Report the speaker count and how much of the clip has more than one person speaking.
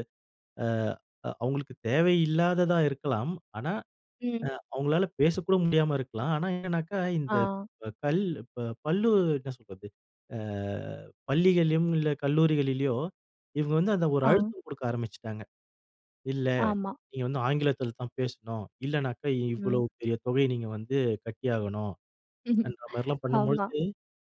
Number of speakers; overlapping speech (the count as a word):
two, about 5%